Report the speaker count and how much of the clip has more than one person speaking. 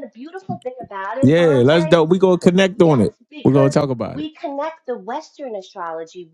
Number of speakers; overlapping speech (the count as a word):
two, about 30%